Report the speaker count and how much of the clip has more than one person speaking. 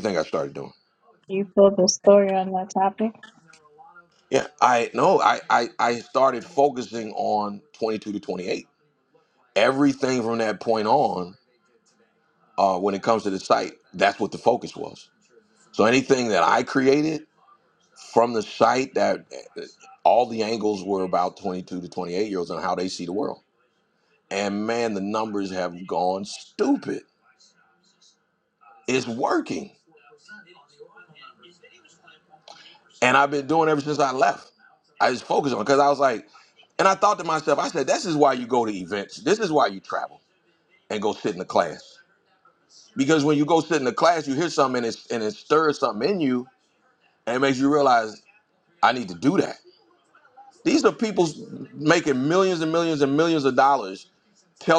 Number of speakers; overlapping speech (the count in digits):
2, no overlap